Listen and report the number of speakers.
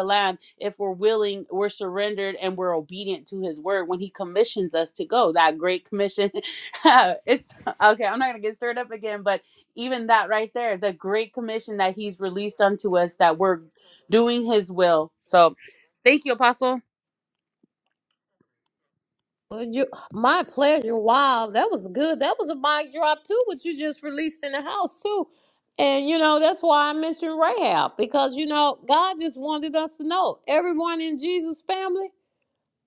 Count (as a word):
two